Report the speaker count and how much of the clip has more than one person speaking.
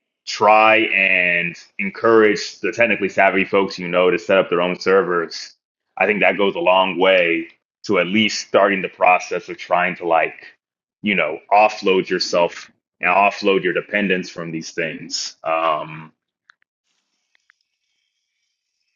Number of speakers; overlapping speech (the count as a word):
one, no overlap